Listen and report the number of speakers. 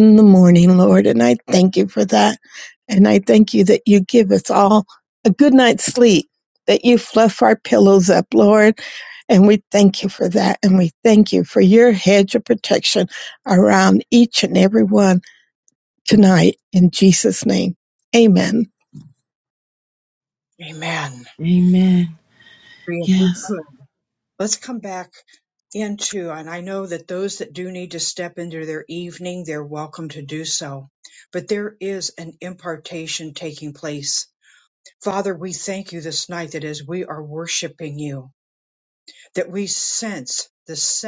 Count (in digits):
3